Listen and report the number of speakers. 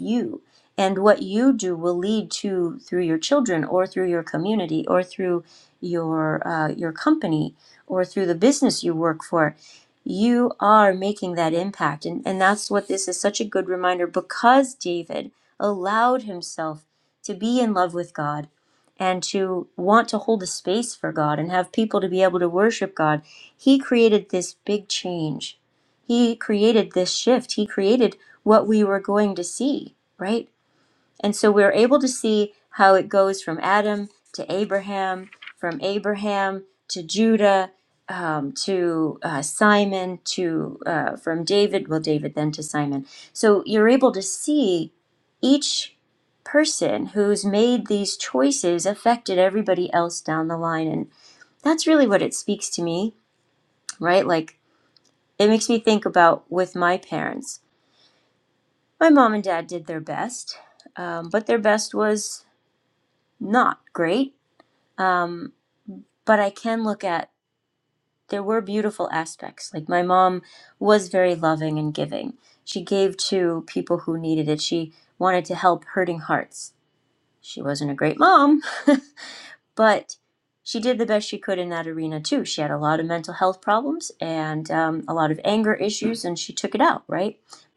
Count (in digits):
1